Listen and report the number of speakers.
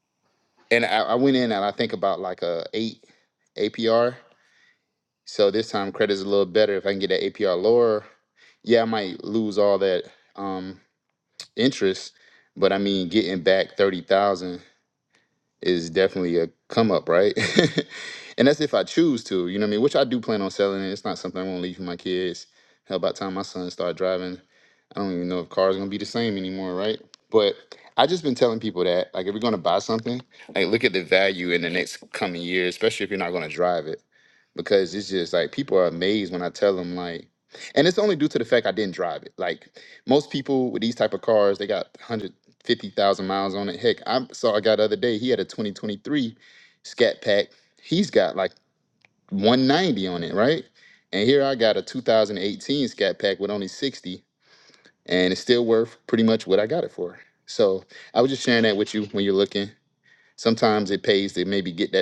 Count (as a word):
one